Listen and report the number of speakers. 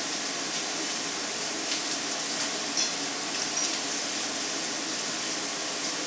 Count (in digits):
0